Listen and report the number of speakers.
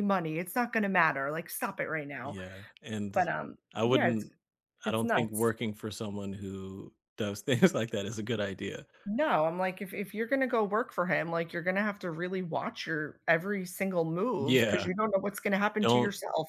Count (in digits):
2